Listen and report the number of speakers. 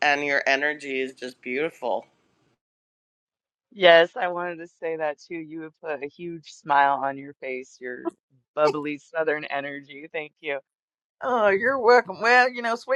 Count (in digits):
3